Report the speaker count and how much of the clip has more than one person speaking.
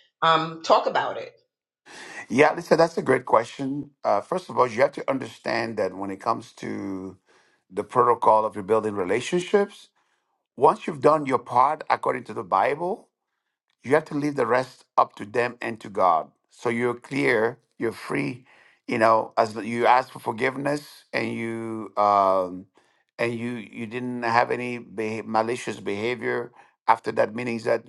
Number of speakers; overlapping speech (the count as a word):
two, no overlap